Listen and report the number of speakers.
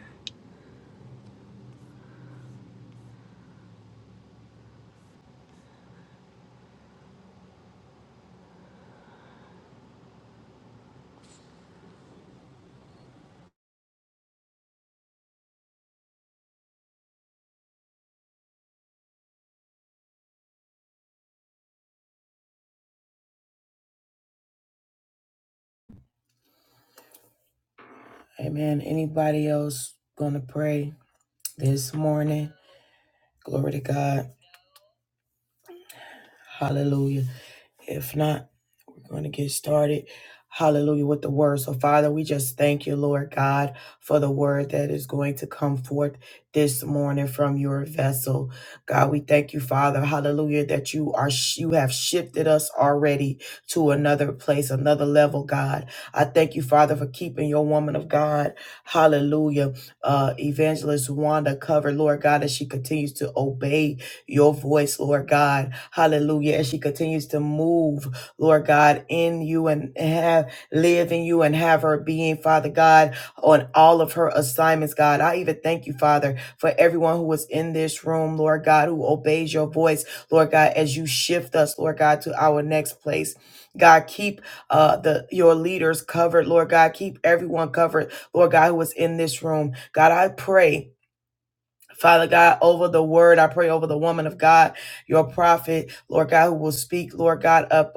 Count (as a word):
one